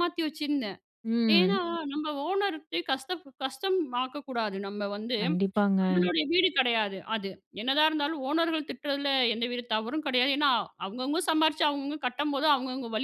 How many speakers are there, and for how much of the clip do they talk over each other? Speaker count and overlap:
two, about 3%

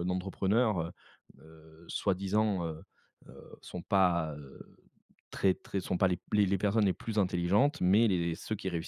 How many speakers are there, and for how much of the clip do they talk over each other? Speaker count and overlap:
one, no overlap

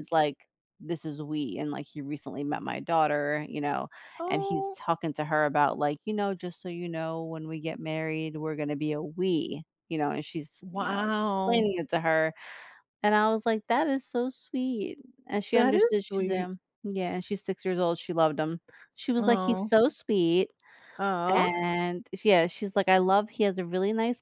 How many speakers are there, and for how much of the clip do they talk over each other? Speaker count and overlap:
two, about 11%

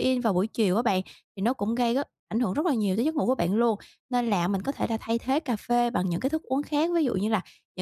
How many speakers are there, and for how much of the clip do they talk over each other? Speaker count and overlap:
one, no overlap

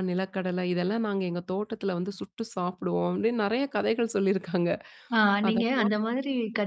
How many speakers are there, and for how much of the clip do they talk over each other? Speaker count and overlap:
two, about 7%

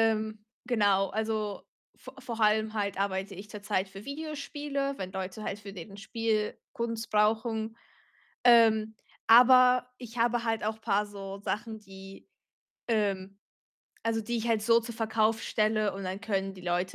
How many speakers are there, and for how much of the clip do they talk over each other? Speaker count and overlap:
one, no overlap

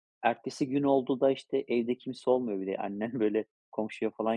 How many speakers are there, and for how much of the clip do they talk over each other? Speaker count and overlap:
one, no overlap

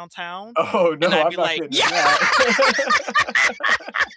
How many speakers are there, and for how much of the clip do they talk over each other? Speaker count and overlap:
two, about 22%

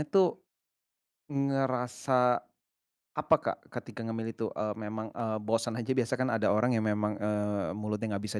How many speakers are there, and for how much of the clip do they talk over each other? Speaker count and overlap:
one, no overlap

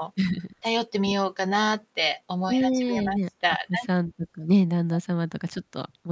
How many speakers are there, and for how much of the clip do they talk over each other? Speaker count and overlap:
two, about 17%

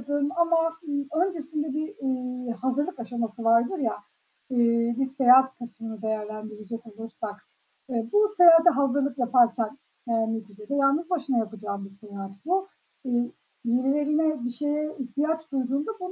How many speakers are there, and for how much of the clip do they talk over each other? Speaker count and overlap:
one, no overlap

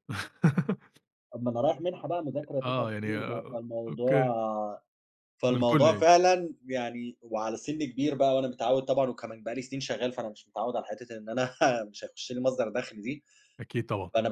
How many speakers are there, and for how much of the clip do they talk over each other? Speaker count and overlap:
two, about 15%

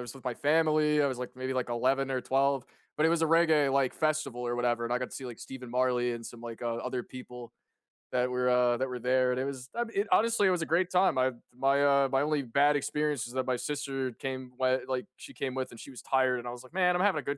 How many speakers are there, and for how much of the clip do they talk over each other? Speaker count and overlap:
one, no overlap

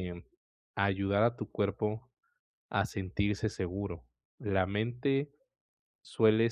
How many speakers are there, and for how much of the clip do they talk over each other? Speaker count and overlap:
one, no overlap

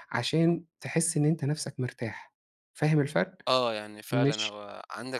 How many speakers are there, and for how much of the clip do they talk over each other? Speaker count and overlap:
two, about 8%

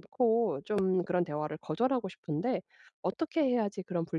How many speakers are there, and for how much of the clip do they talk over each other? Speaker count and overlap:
one, no overlap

